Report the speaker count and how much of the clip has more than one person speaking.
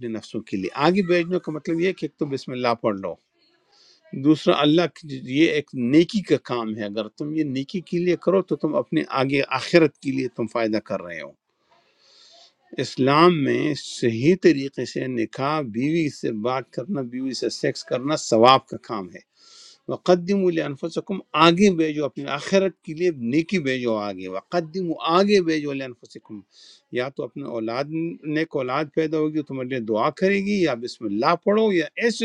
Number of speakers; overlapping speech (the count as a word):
one, no overlap